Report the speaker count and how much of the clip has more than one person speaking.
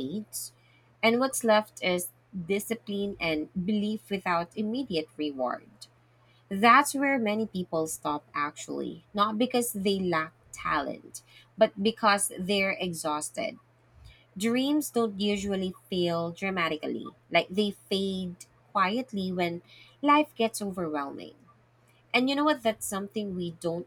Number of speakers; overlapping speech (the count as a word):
one, no overlap